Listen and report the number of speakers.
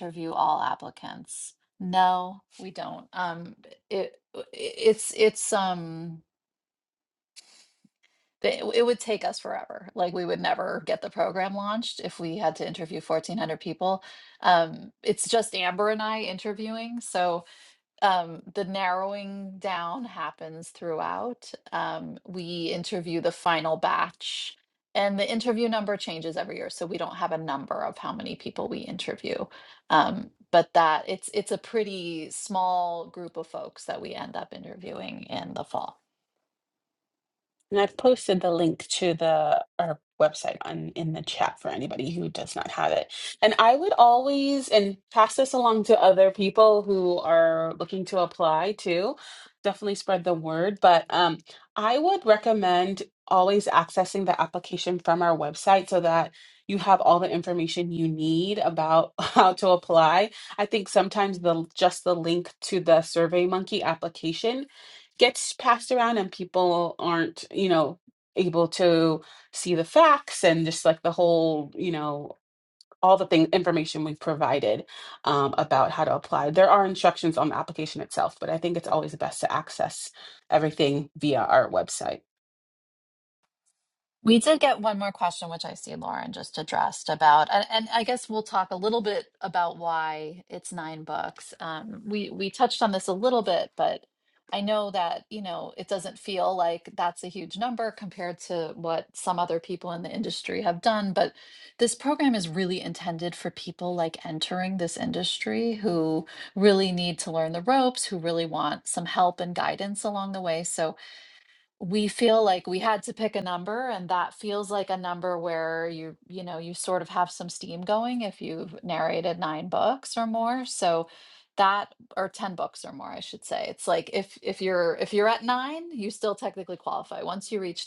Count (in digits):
2